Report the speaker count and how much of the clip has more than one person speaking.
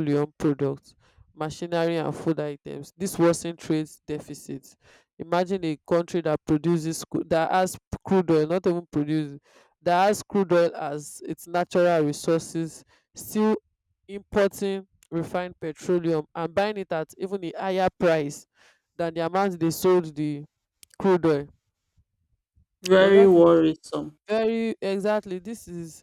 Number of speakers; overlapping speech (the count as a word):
two, about 2%